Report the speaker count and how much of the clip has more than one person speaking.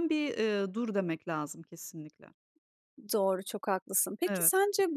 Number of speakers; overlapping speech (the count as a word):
two, about 4%